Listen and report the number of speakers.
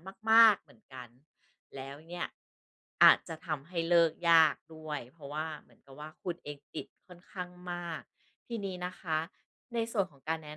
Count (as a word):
one